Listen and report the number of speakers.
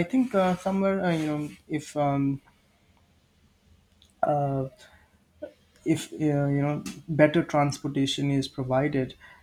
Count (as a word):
one